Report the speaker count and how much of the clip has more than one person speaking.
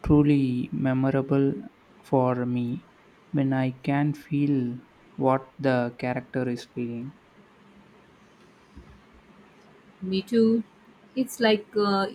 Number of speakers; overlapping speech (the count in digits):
2, no overlap